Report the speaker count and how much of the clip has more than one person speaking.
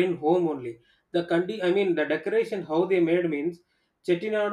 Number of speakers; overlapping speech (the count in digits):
1, no overlap